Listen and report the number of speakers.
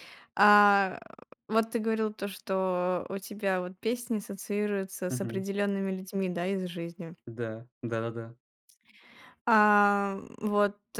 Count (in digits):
2